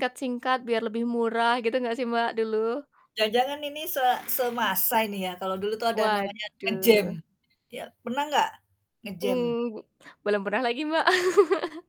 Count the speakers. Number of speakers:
two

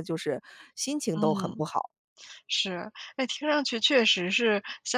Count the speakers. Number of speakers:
two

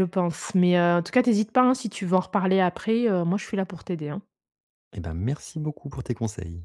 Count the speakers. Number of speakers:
two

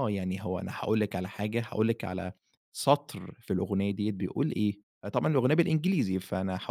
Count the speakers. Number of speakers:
one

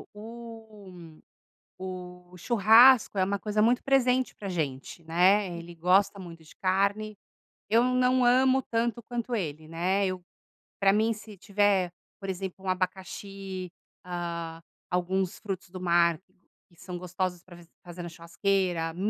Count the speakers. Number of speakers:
one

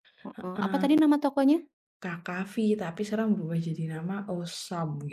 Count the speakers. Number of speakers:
two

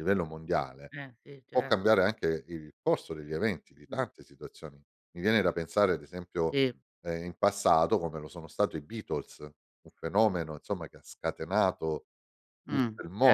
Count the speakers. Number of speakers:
two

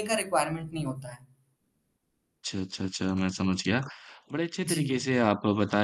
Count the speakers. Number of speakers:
two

